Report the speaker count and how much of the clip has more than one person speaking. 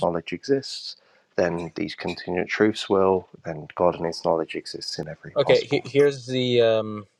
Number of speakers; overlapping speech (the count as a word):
two, about 7%